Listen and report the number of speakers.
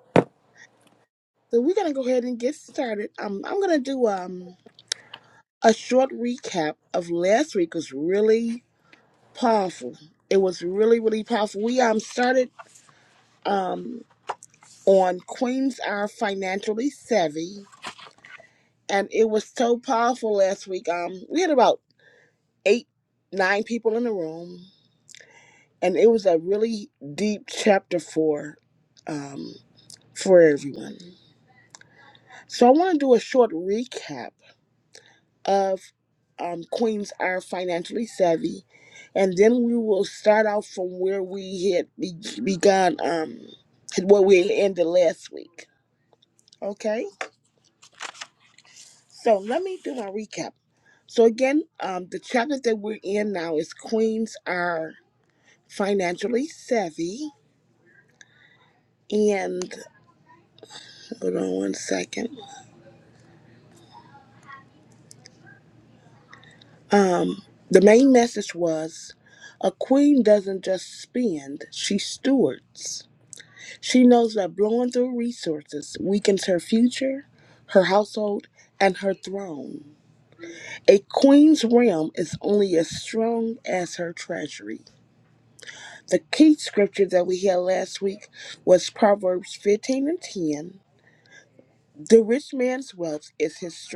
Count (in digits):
1